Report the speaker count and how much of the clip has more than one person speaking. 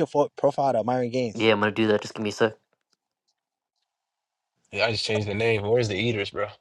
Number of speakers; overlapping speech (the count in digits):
3, no overlap